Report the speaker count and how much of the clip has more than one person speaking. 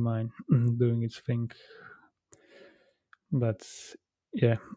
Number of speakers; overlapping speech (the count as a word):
one, no overlap